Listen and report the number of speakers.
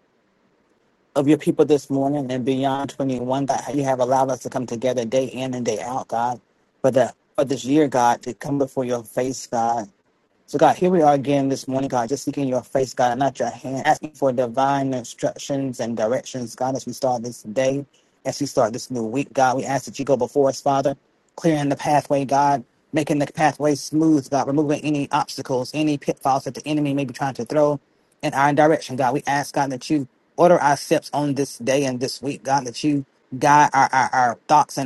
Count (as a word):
one